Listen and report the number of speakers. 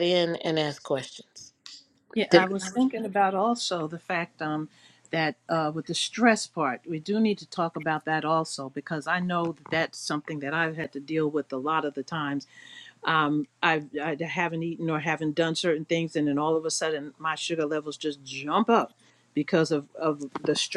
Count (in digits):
2